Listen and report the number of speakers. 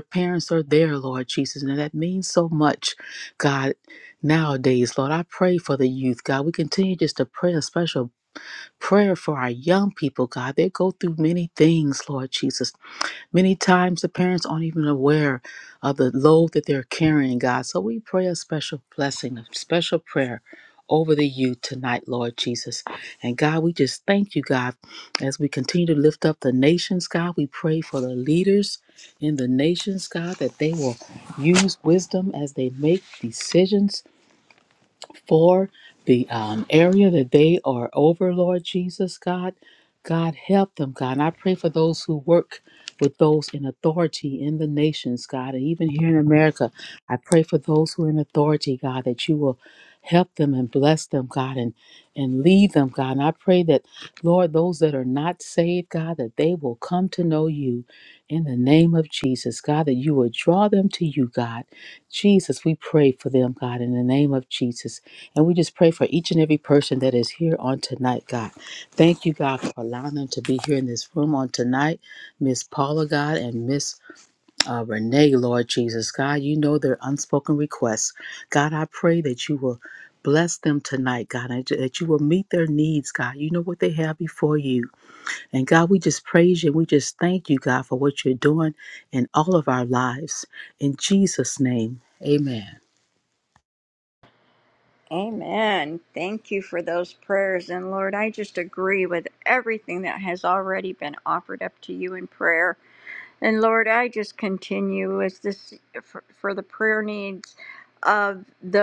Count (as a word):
two